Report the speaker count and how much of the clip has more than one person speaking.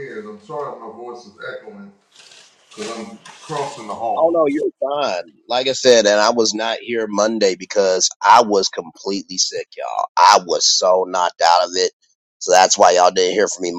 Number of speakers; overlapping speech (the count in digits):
2, about 1%